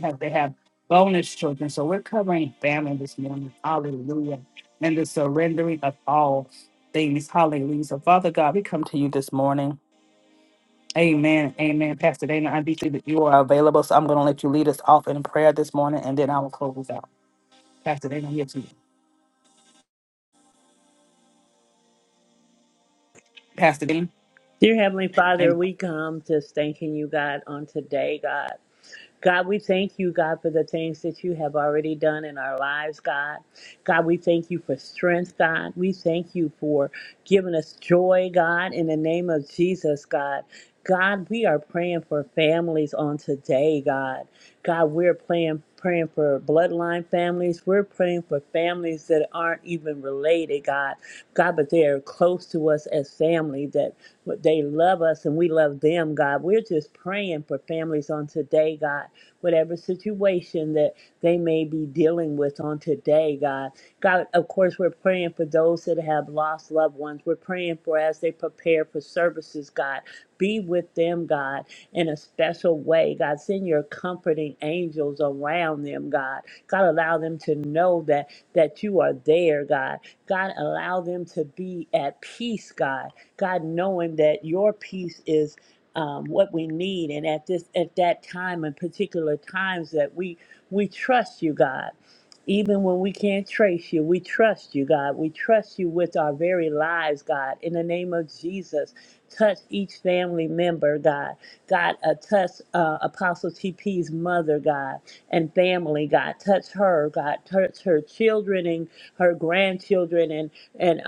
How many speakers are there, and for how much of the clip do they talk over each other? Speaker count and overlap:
two, under 1%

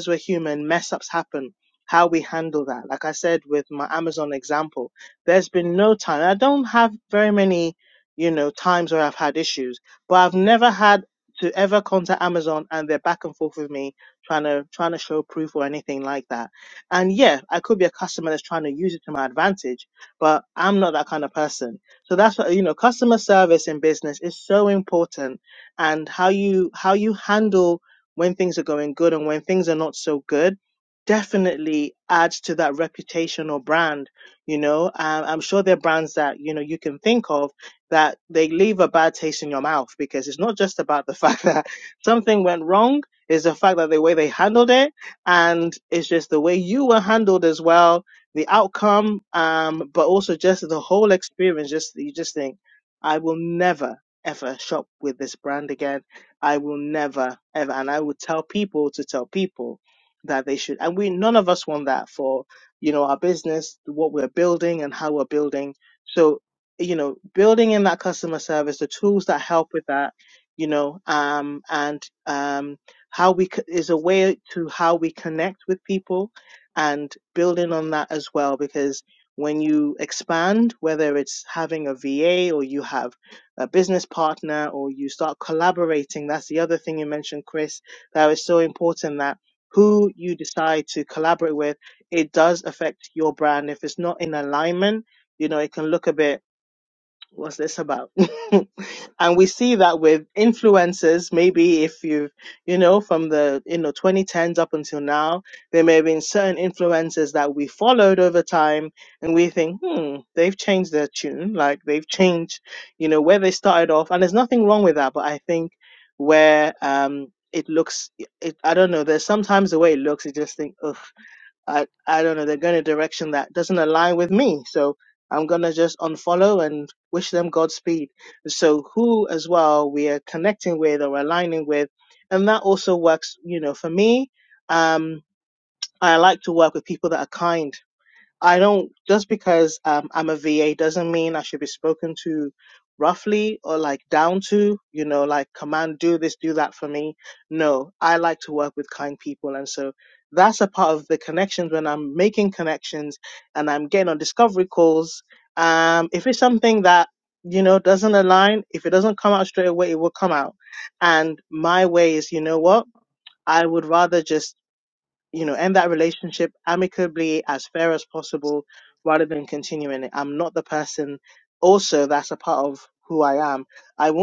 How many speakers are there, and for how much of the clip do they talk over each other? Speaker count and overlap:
one, no overlap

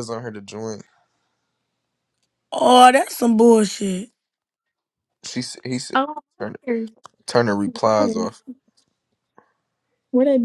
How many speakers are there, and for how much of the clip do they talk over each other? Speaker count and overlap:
three, about 3%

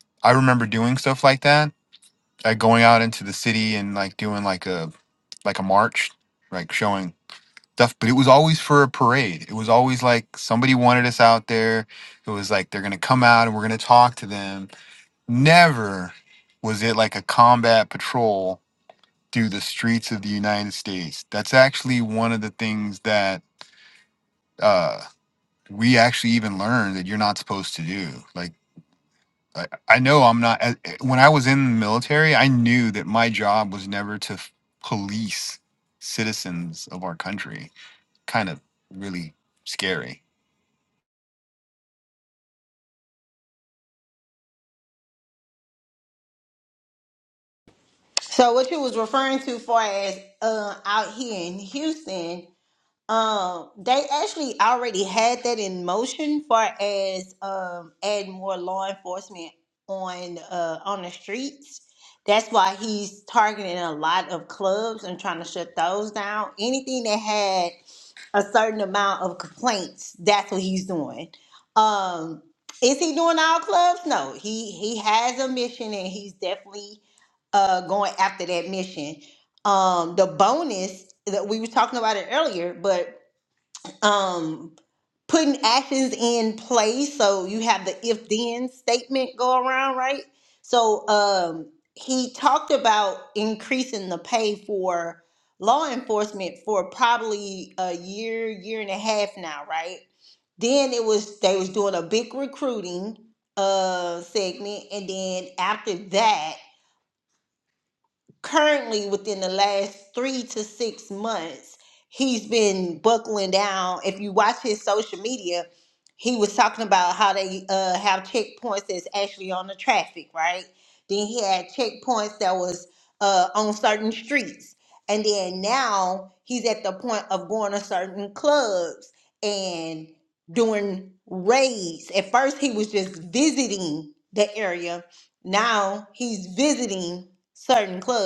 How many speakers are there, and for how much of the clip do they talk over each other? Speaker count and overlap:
two, no overlap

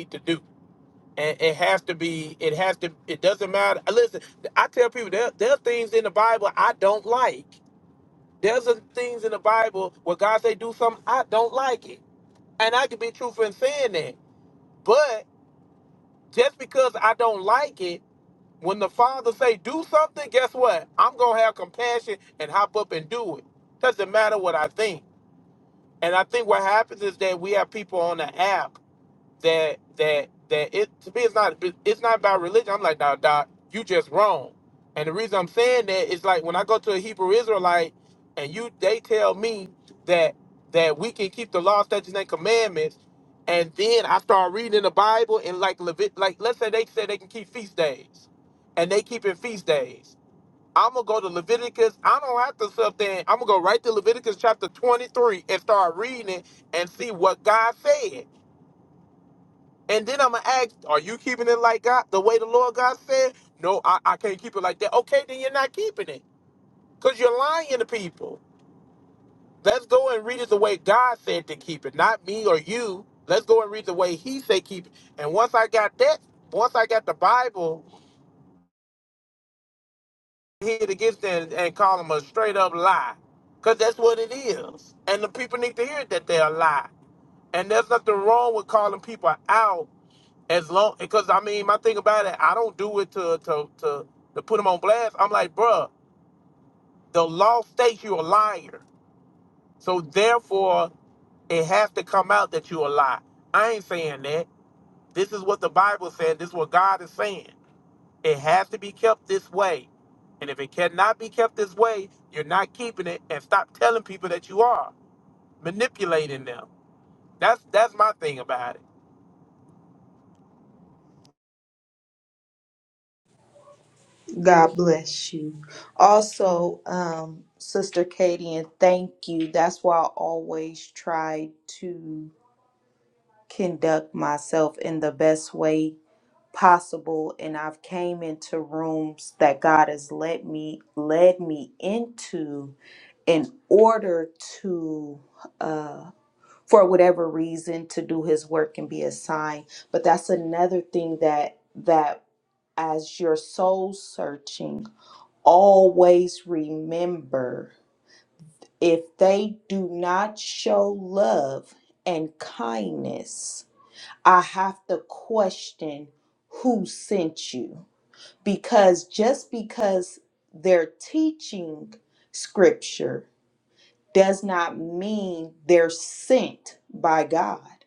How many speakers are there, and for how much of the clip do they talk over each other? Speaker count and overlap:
two, no overlap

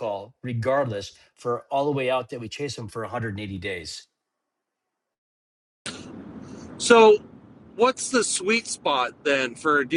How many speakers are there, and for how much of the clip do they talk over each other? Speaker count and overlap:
two, no overlap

